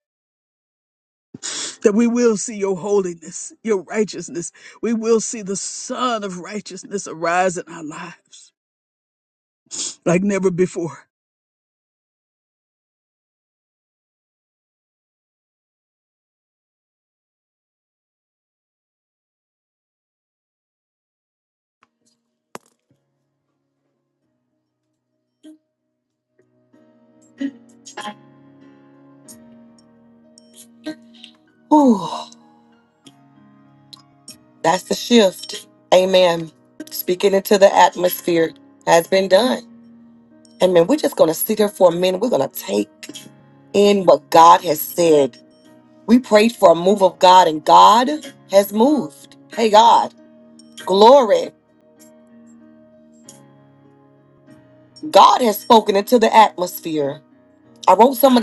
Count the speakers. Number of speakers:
2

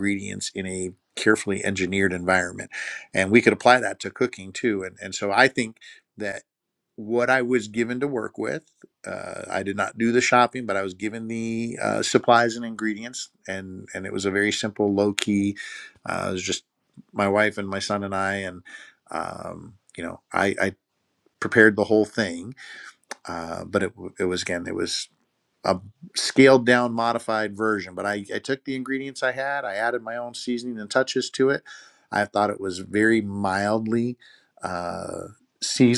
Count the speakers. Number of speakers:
1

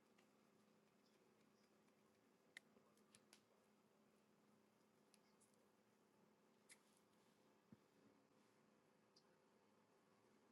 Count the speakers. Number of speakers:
0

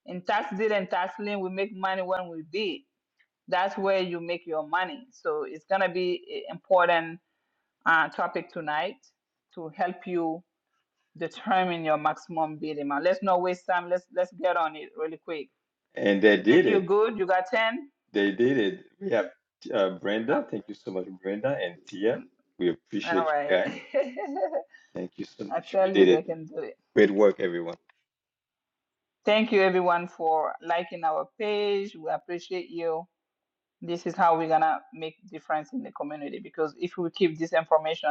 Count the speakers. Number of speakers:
2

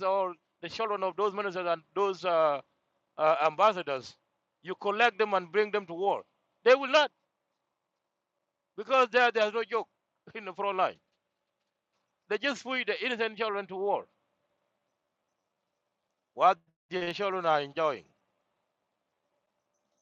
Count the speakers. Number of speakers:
1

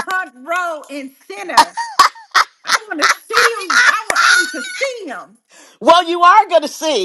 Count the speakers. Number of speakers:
2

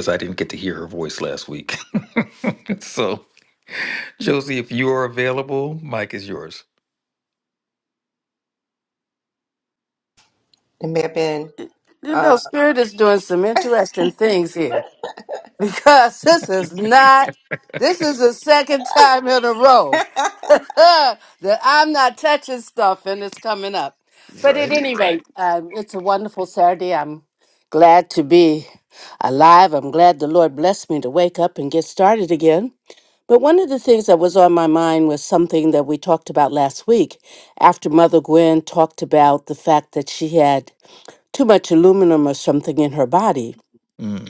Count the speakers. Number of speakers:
3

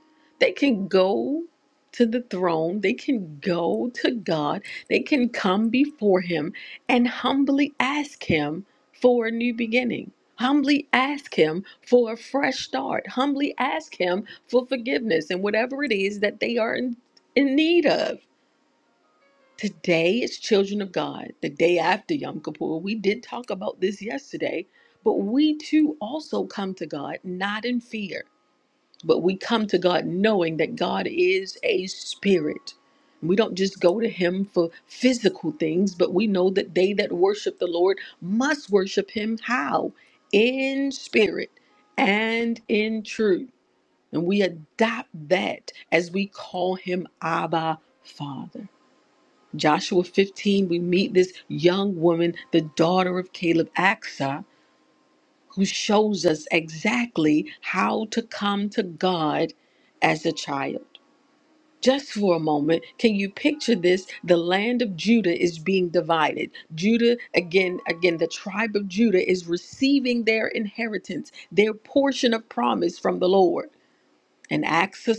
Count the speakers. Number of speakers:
1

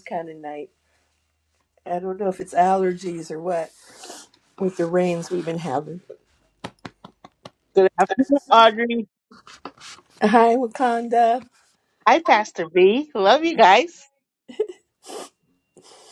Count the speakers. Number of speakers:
2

